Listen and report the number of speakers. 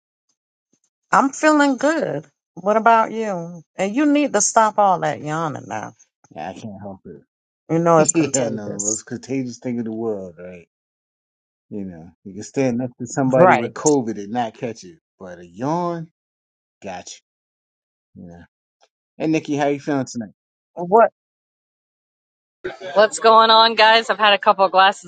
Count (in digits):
3